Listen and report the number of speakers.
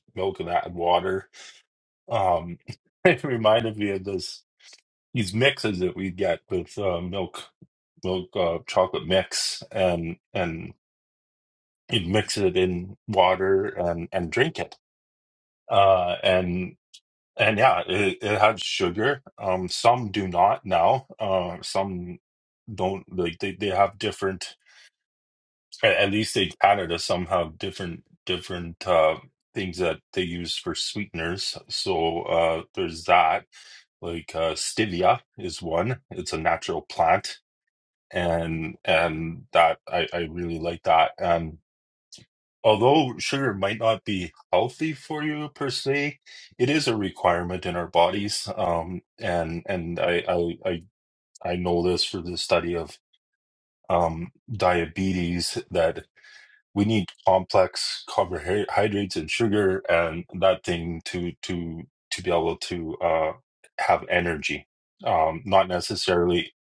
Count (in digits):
1